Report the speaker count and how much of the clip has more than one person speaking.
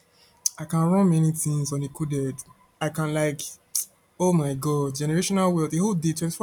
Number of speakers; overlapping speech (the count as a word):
one, no overlap